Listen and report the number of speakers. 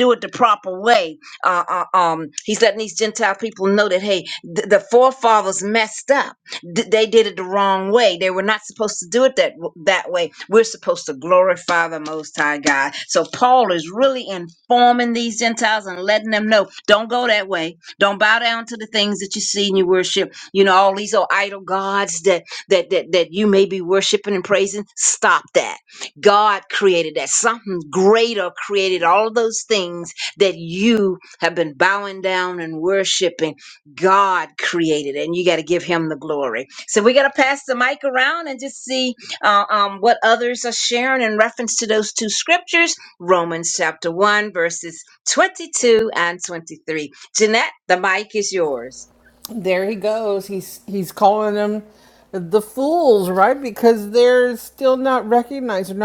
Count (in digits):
2